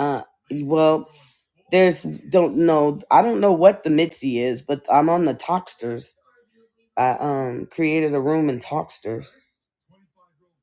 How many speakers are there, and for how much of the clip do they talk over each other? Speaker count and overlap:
1, no overlap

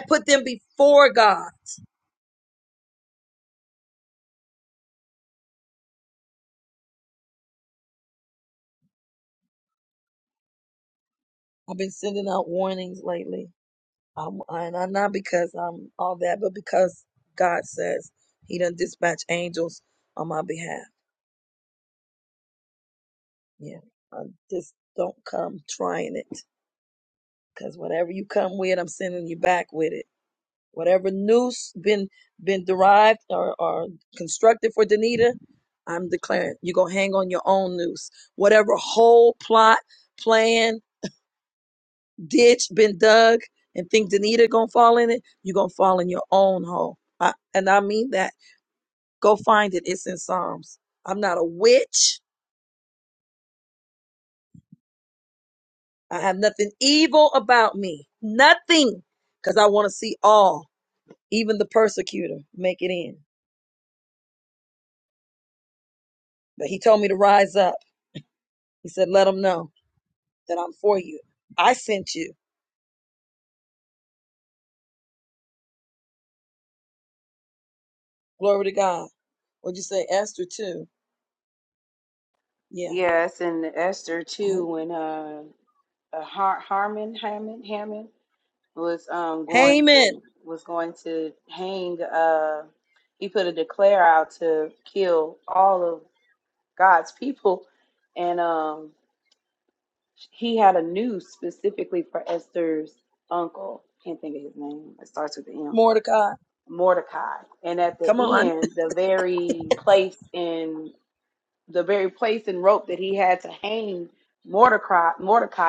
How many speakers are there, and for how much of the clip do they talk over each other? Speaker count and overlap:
2, about 1%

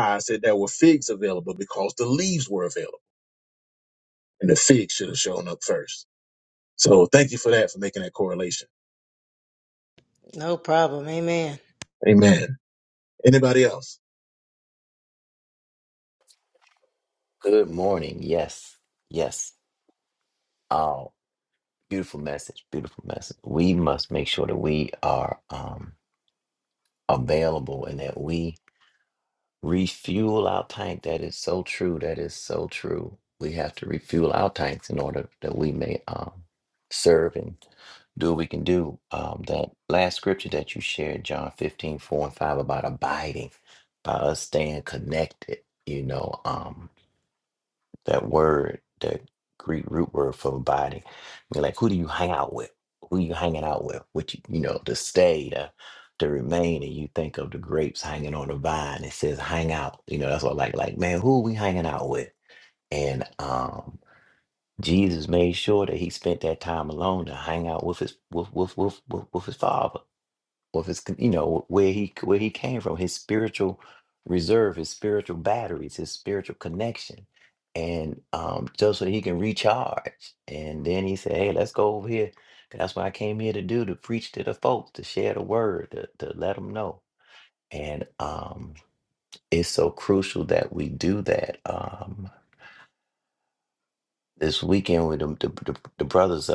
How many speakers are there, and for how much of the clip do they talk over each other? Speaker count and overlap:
3, no overlap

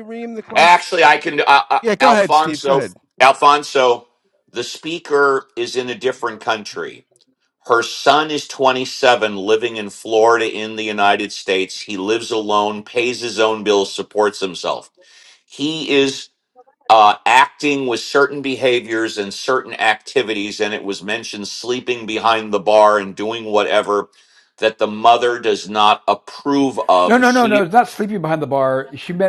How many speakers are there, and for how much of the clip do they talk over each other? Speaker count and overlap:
3, about 7%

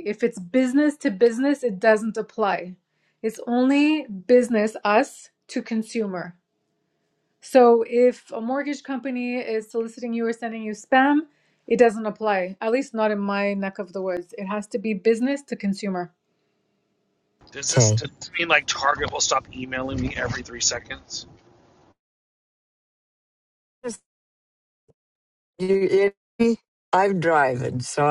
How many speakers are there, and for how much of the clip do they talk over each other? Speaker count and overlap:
3, about 1%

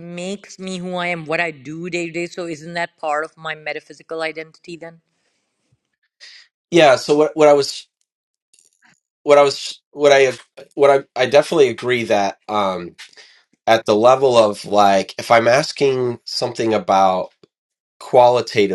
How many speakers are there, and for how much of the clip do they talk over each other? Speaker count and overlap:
2, no overlap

